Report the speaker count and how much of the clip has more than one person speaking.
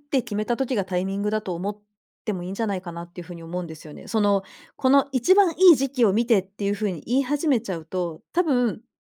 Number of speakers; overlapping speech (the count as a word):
one, no overlap